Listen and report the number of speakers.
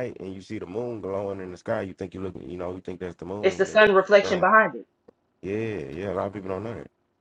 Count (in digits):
2